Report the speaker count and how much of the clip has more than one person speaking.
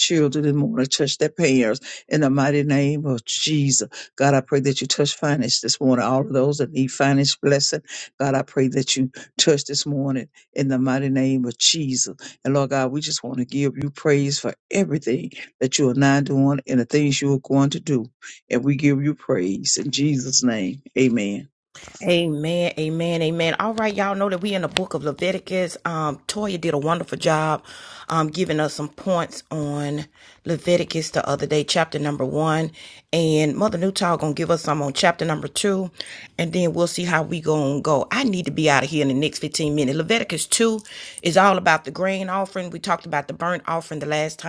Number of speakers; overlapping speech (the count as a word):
two, no overlap